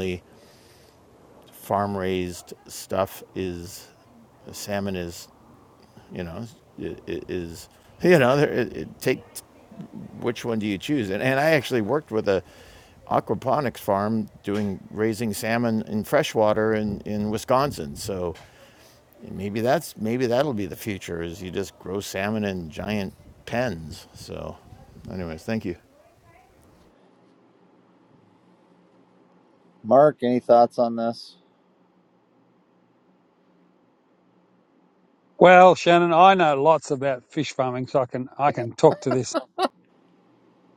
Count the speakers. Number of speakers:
3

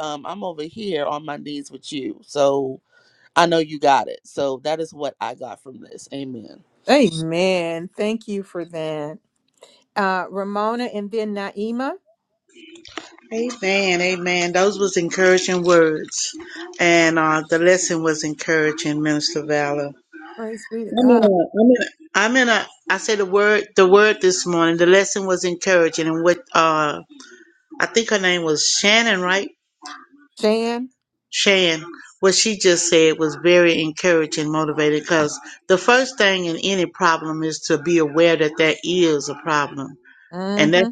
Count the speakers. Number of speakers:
3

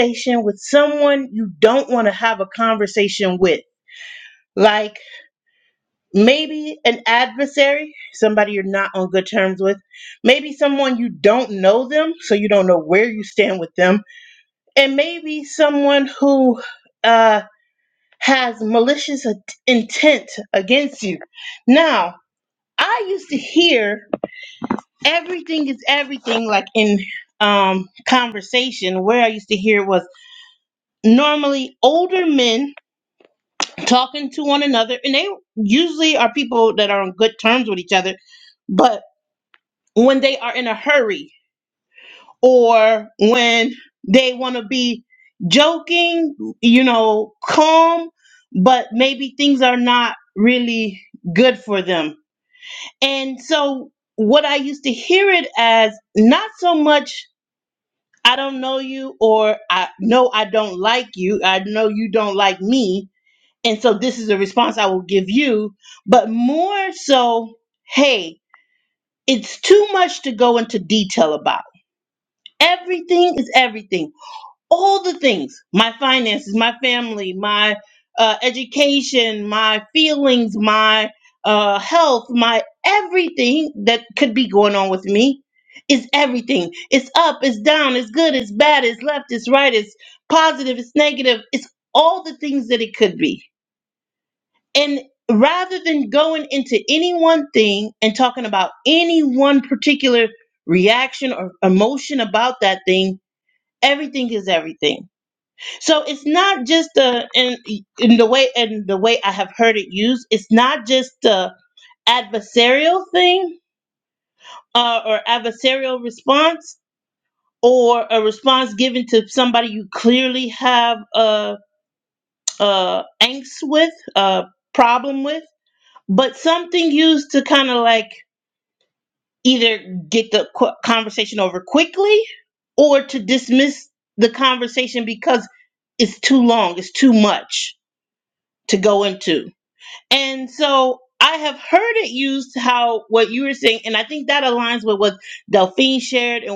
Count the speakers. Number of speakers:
1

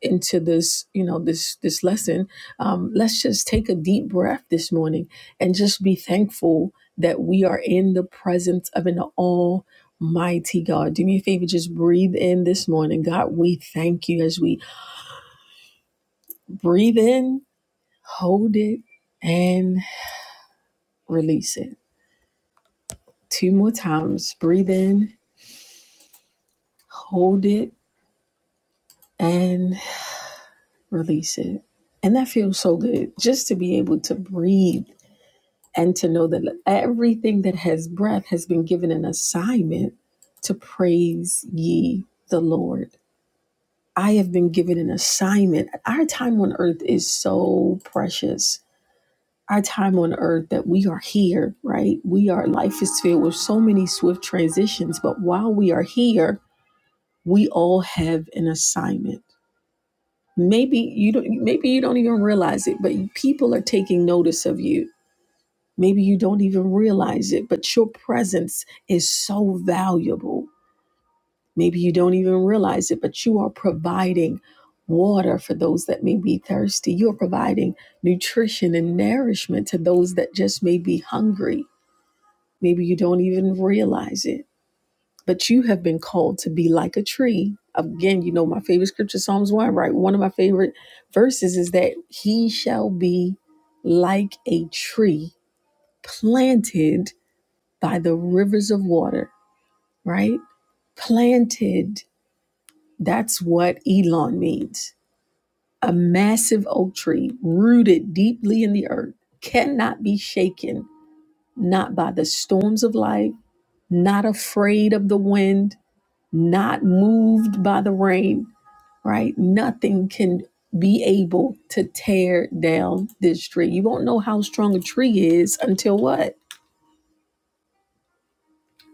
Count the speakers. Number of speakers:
1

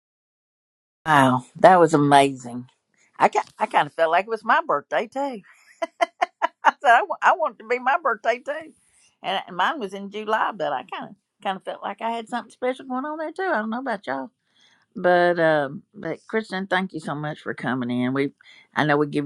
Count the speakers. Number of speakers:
1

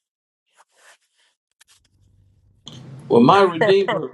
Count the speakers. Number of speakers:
1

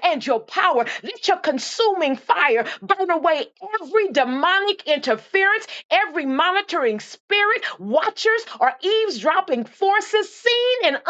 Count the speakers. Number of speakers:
1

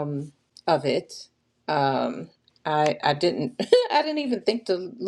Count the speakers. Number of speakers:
1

